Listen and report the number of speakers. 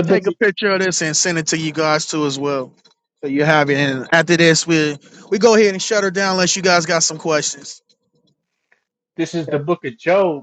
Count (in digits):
2